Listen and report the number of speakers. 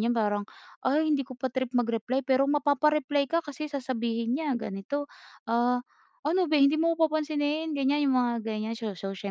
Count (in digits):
1